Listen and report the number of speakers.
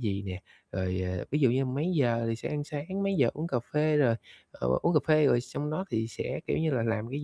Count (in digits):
1